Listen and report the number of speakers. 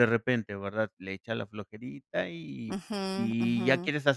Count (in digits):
2